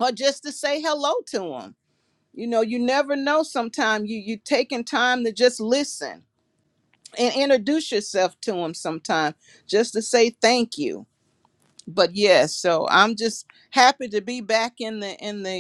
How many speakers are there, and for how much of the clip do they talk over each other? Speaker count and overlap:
one, no overlap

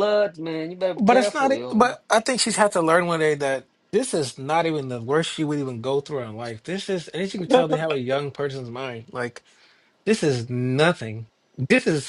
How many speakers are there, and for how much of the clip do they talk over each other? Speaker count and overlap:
two, about 8%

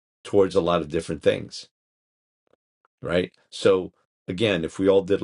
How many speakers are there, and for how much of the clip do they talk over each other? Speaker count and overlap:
one, no overlap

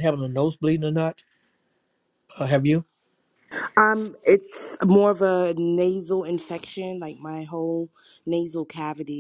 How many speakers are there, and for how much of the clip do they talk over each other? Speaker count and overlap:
two, no overlap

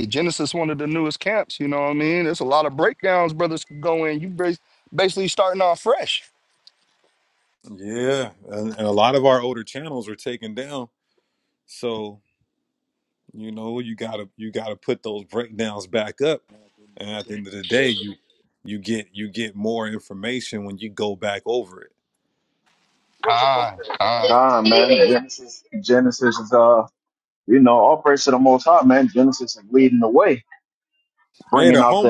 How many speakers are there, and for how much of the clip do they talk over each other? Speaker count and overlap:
three, about 2%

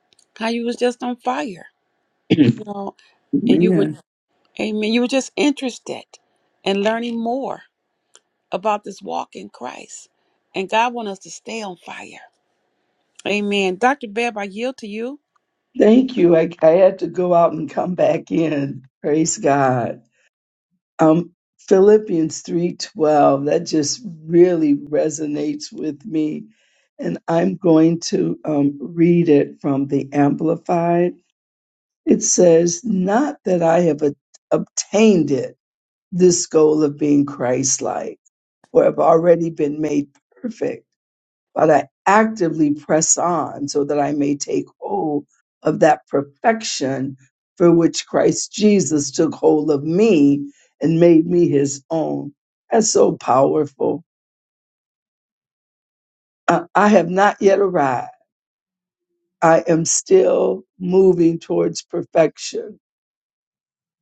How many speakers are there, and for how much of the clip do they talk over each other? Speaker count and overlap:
two, about 1%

